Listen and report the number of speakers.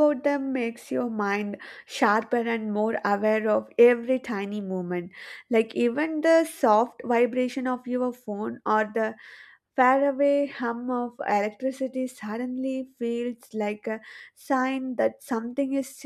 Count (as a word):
one